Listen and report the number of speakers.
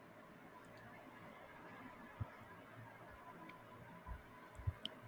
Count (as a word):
zero